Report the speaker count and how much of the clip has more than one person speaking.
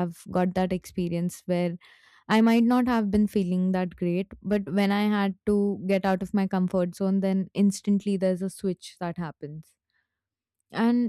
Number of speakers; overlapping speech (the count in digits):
1, no overlap